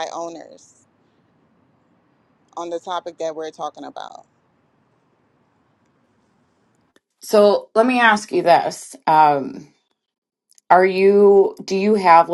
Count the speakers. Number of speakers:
2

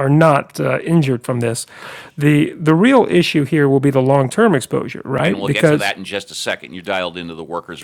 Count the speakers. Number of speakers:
2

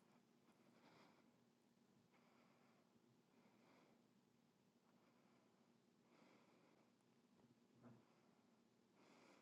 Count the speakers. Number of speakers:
0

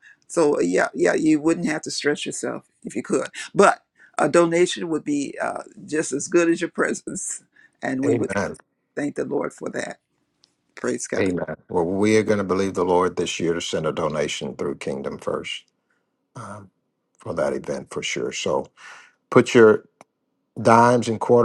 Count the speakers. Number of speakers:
2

